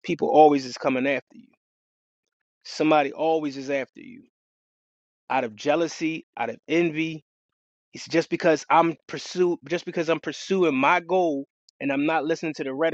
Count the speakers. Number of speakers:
1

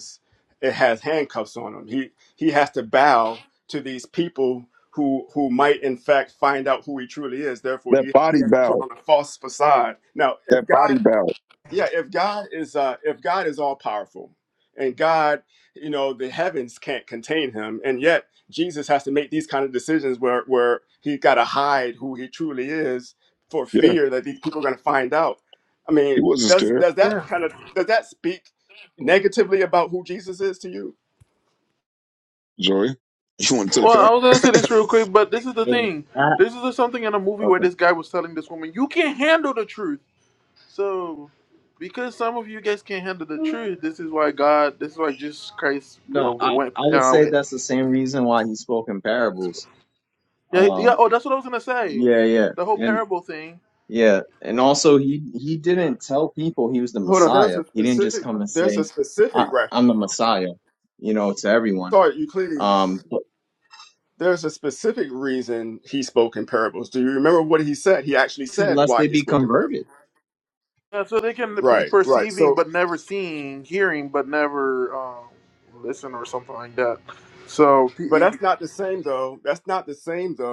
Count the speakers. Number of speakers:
4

